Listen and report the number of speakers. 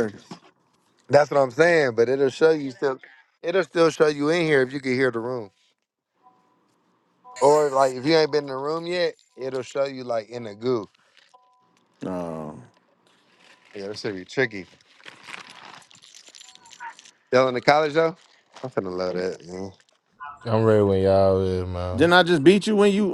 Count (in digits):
3